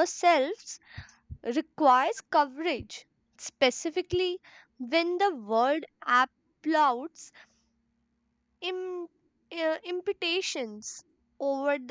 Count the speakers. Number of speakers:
1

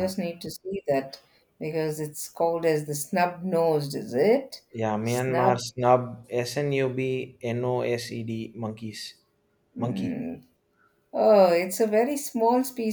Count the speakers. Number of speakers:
2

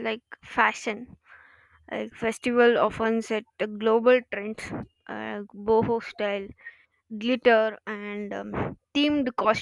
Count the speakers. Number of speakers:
1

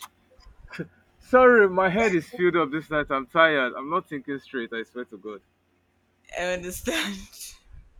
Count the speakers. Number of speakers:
2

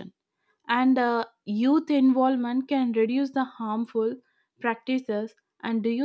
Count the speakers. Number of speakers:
1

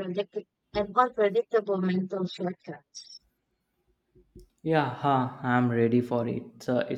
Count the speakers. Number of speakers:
2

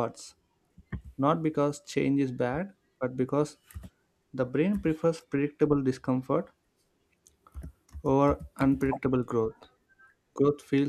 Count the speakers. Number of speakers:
1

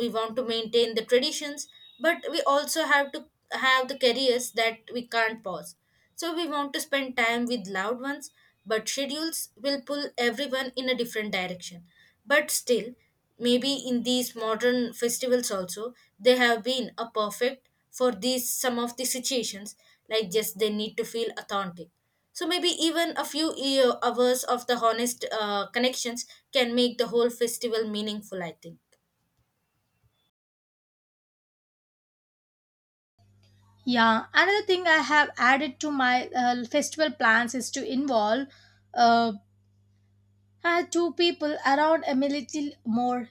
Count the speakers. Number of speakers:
2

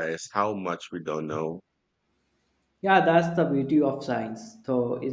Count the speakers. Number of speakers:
2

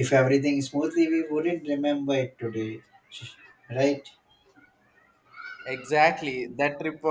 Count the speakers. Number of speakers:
2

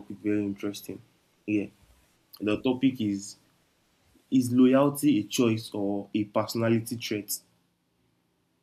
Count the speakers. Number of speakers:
1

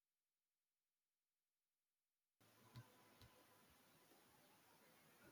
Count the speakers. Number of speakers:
0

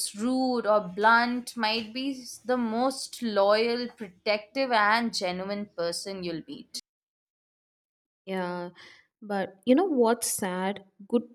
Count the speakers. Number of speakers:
2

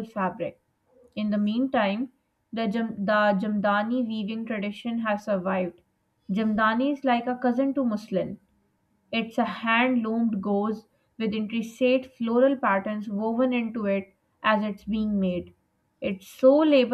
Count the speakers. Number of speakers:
1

